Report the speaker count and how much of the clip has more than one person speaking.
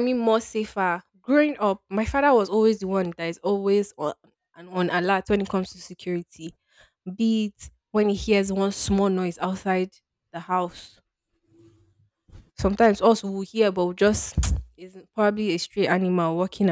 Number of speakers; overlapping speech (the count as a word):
one, no overlap